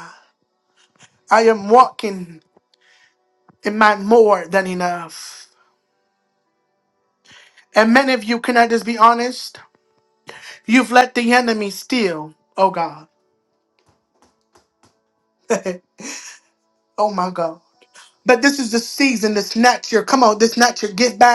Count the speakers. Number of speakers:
one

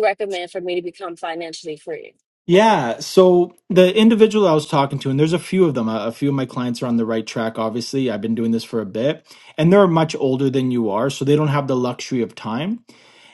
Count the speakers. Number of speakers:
two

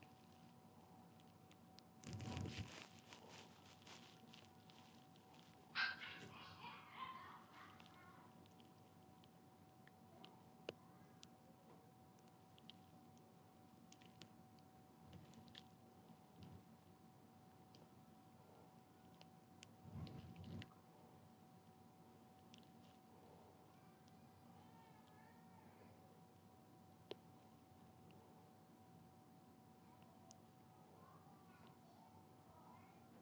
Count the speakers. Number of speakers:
zero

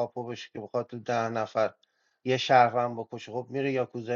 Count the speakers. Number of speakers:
one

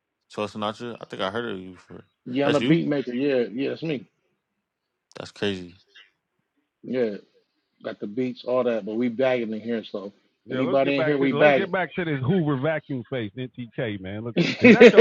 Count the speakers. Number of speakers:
three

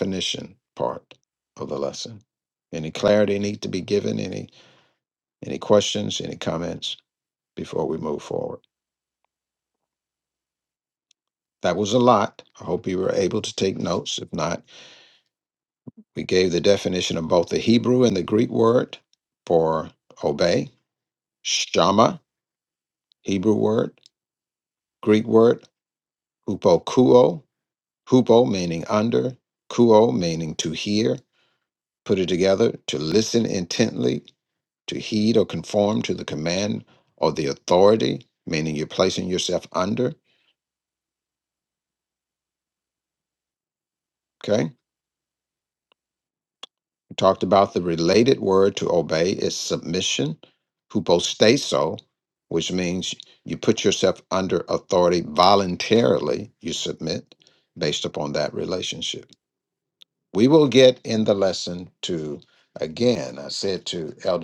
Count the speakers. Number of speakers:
one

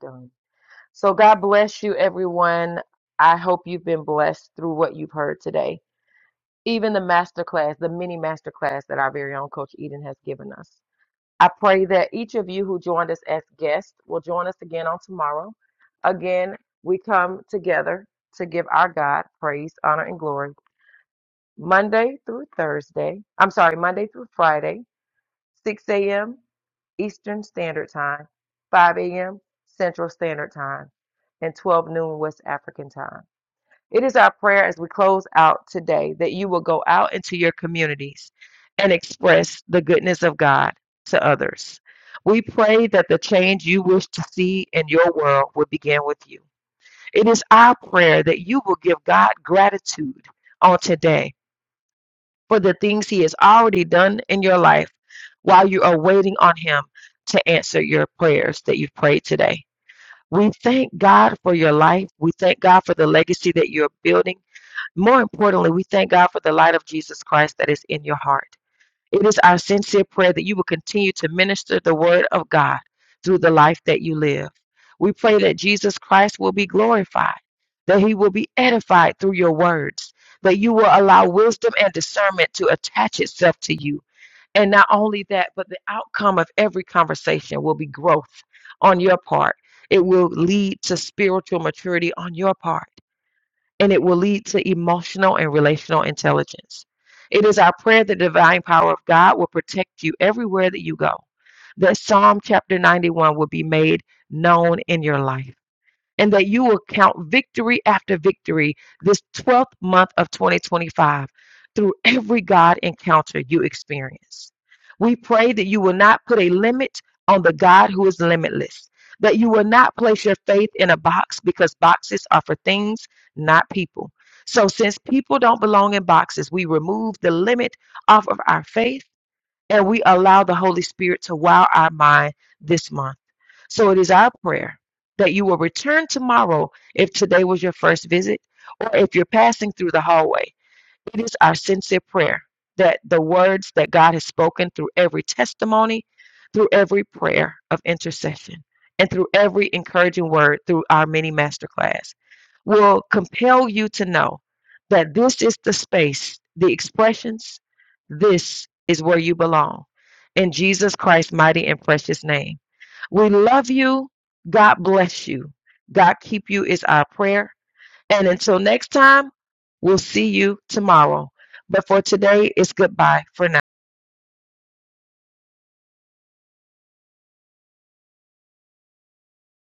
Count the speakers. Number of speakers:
one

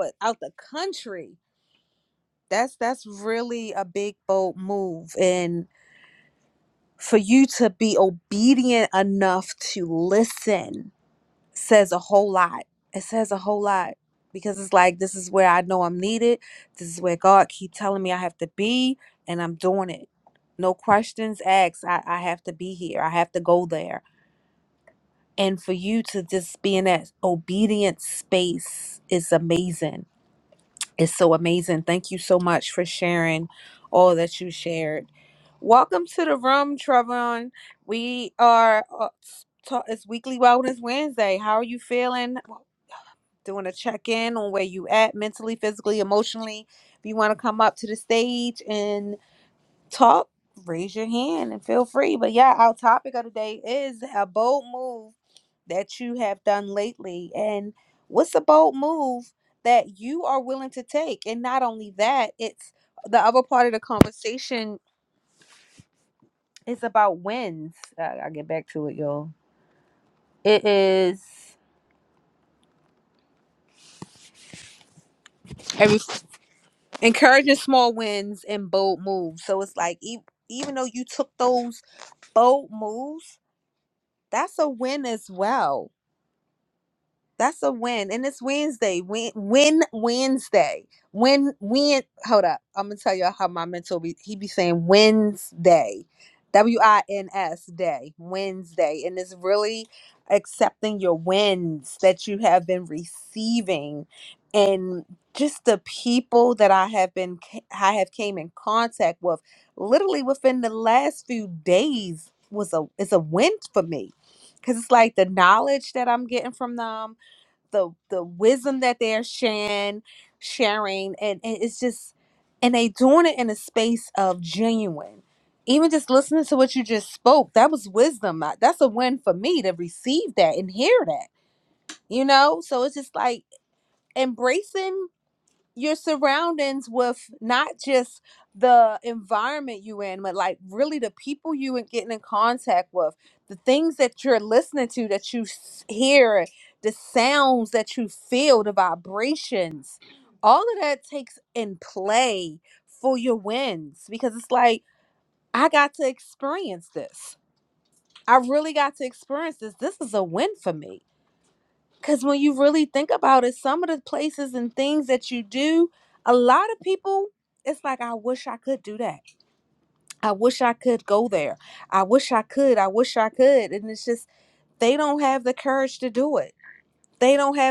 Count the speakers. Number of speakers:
one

